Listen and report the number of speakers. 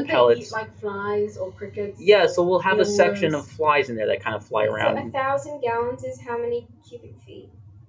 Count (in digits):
3